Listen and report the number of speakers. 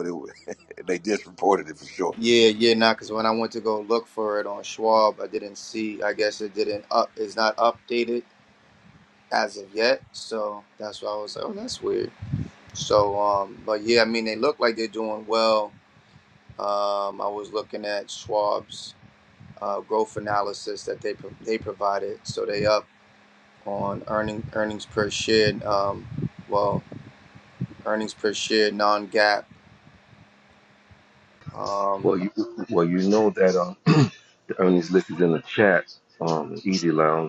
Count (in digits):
3